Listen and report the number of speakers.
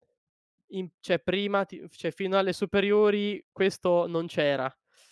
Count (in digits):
1